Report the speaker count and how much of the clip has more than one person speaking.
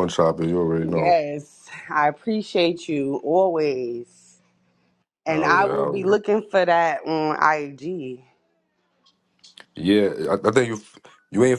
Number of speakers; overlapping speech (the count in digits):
2, about 11%